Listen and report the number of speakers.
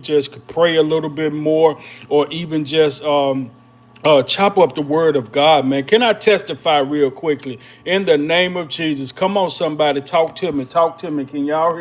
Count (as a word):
one